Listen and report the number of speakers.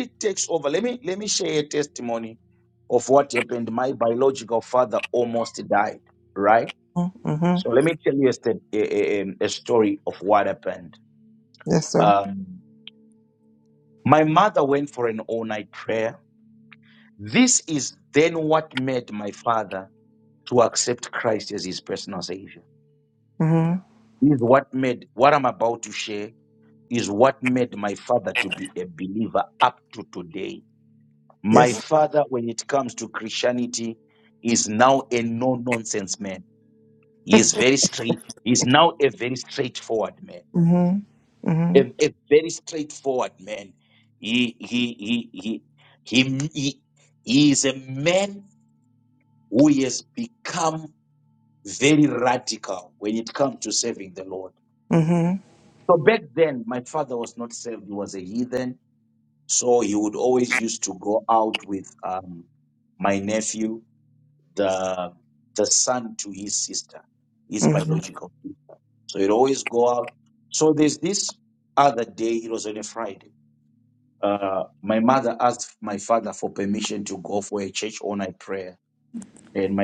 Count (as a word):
two